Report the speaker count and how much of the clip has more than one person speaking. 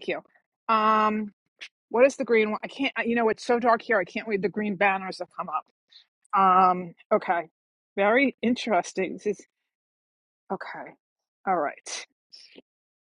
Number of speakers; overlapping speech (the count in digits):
1, no overlap